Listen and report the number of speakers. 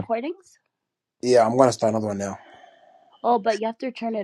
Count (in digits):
2